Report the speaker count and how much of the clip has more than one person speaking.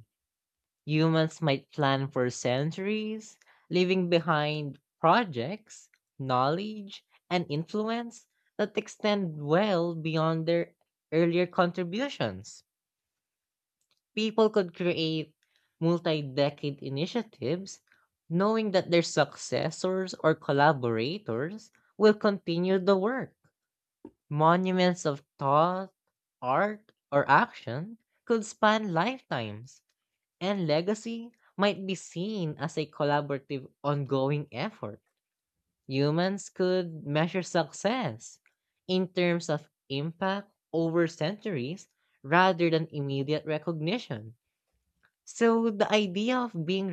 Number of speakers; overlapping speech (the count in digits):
1, no overlap